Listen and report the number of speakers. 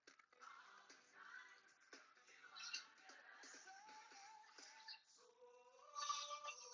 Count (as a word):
zero